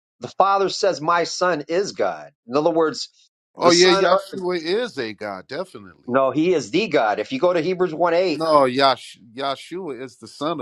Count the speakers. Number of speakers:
2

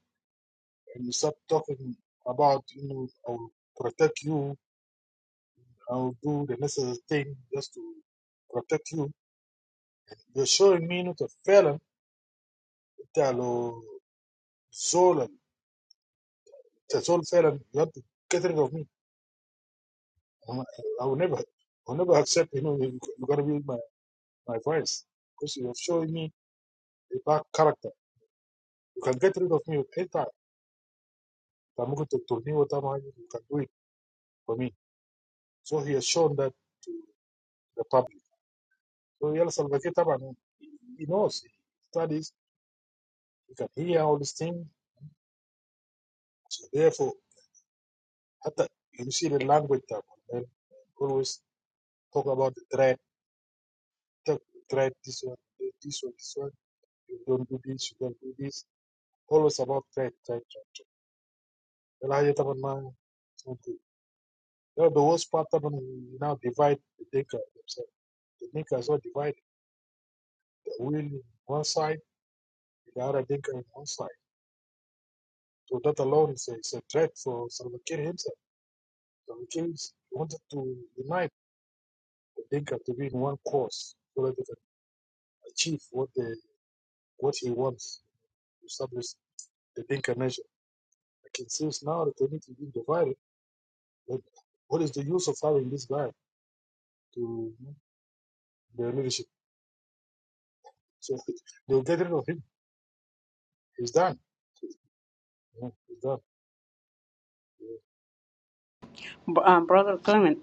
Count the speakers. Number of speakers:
2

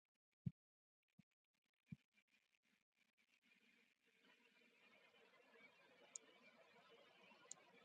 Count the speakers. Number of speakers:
0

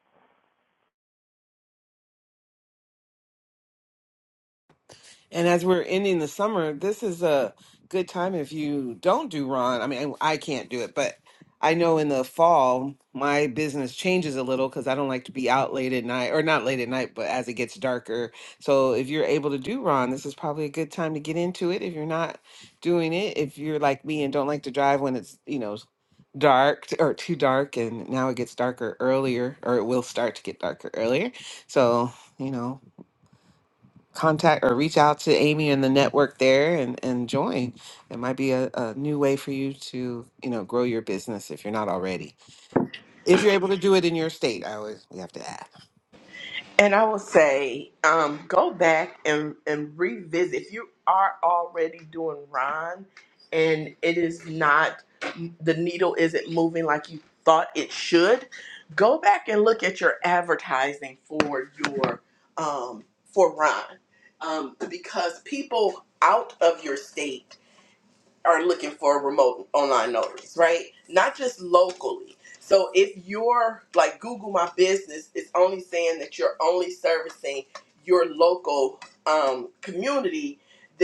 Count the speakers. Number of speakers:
2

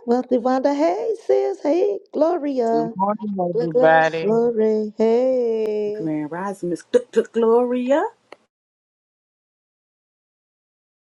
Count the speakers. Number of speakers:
3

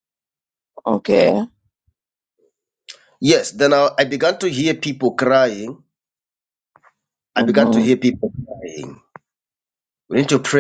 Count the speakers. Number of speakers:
2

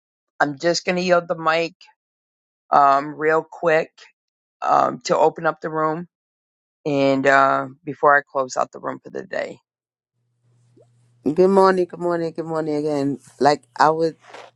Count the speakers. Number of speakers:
2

